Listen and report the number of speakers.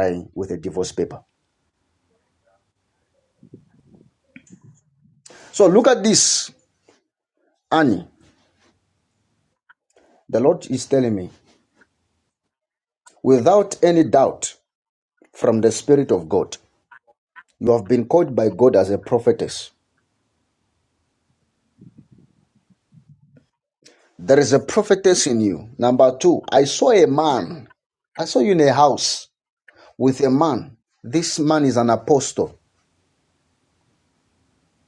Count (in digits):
1